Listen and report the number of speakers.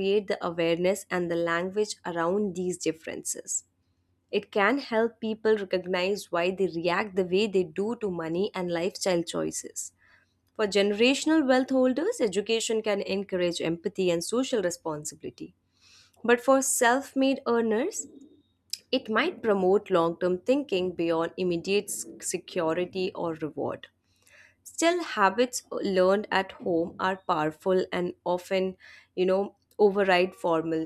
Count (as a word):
one